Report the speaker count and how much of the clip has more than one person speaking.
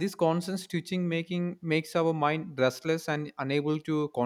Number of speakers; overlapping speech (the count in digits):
1, no overlap